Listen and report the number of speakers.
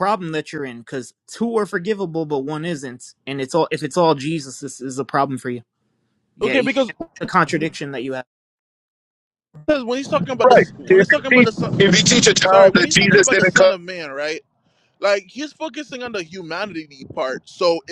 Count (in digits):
3